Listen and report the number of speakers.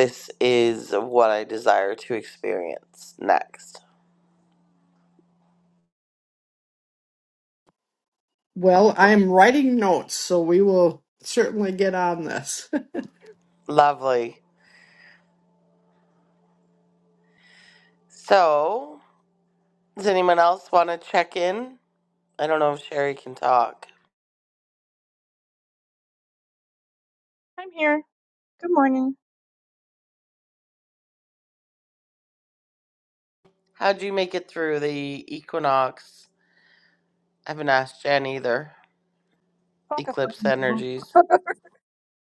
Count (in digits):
3